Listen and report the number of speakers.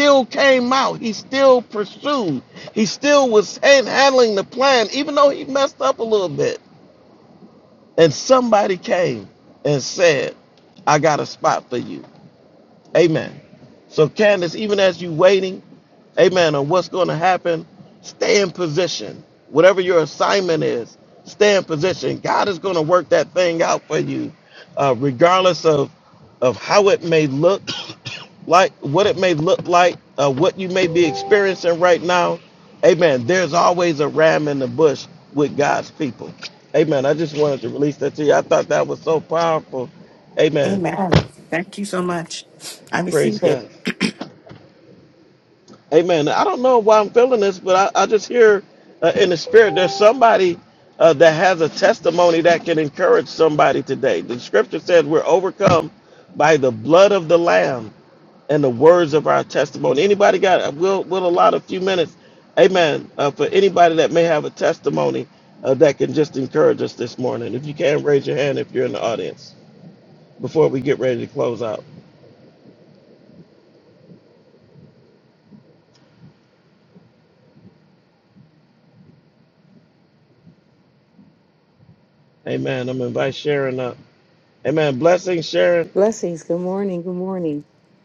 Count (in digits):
3